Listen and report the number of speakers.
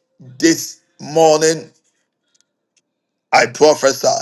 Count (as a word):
one